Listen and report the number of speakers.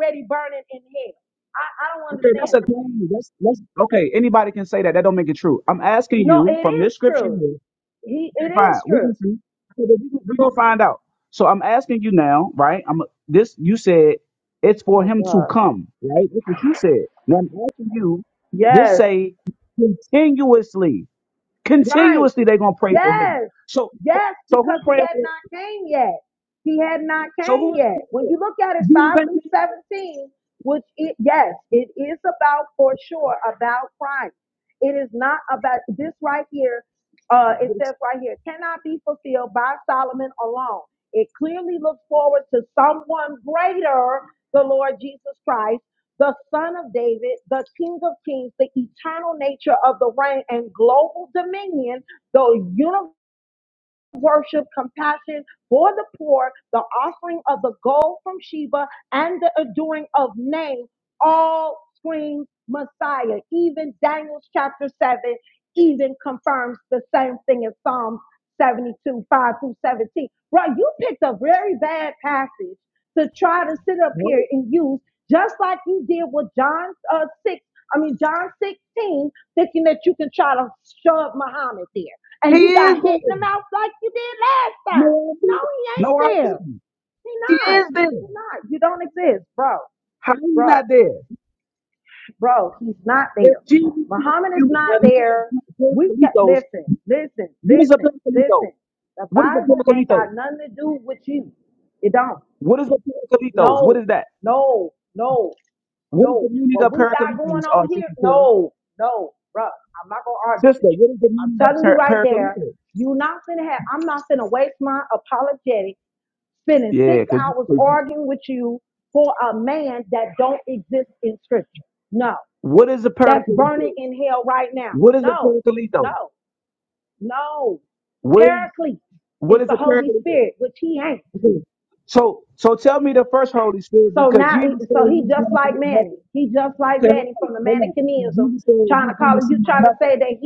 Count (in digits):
2